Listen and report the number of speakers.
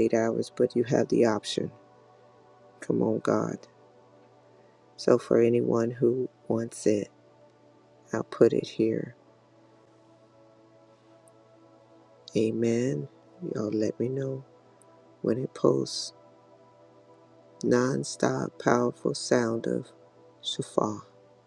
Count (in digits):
1